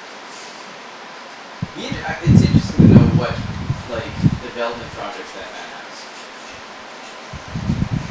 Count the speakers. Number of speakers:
1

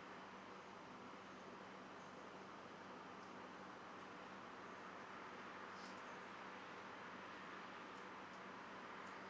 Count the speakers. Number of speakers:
0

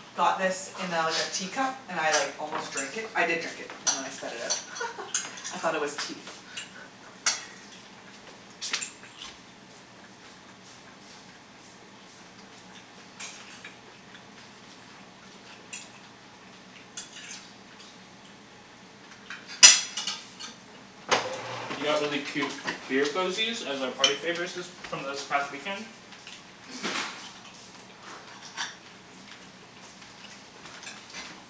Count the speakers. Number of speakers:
2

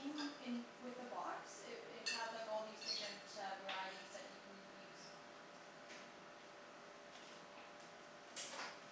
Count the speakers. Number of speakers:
1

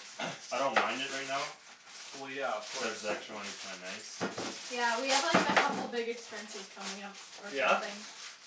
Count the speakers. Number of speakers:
3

